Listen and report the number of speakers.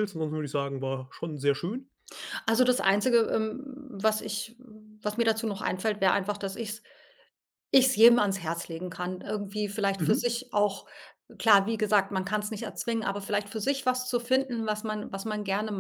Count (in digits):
2